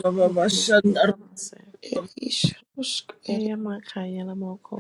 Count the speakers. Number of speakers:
three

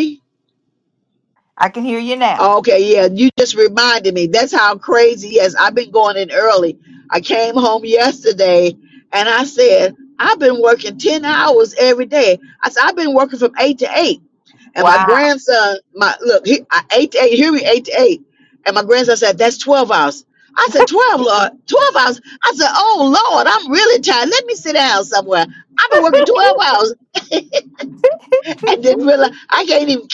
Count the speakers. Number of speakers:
two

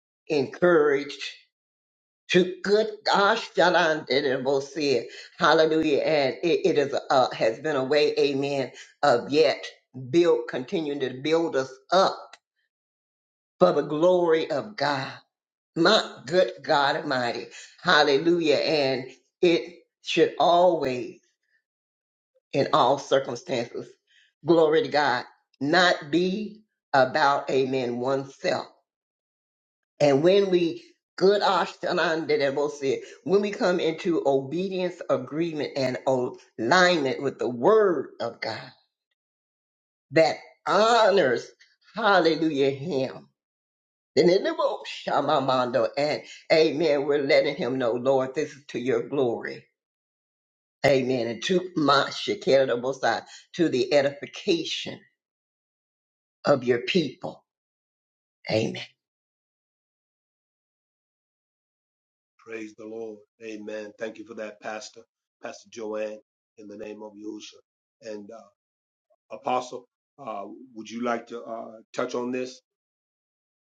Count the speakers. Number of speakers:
two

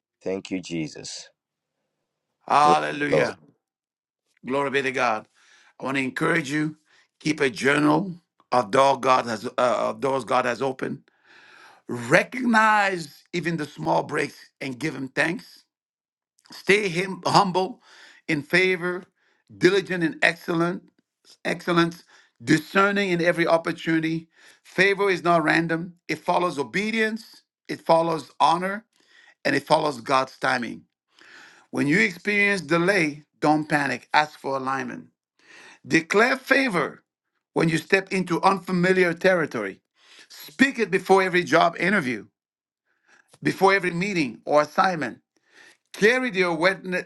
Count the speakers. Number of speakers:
two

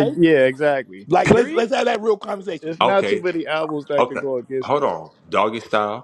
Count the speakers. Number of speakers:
three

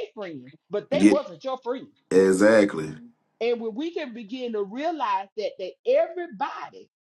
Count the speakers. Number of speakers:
two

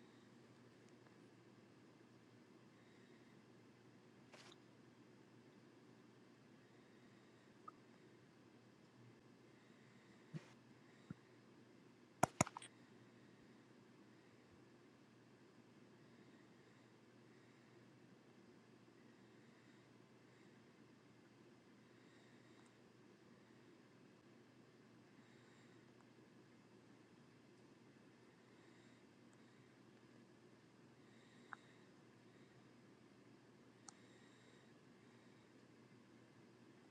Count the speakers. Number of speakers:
zero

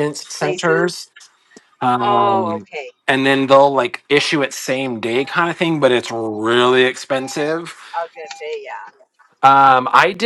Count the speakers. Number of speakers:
two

